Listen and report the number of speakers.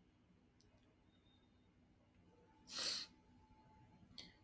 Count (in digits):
0